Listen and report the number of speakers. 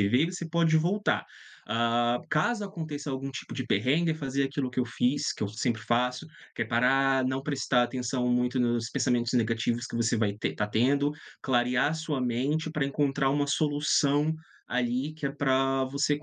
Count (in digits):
1